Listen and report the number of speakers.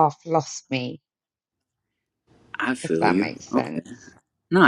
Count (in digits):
2